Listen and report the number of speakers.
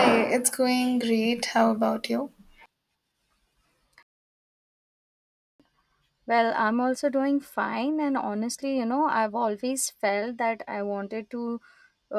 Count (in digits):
2